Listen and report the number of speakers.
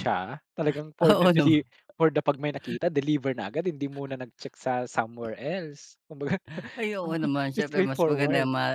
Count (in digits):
2